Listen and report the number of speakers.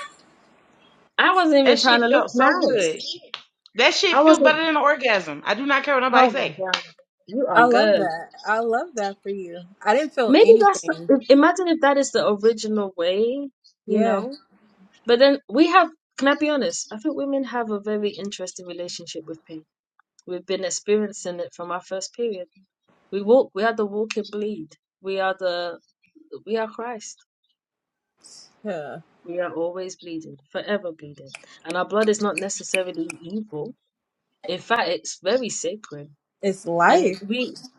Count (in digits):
3